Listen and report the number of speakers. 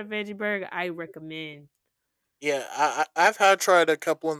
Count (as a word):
two